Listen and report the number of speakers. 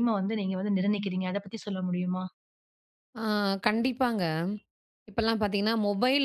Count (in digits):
2